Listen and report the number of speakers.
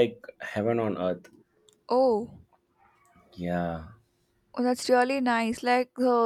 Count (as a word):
two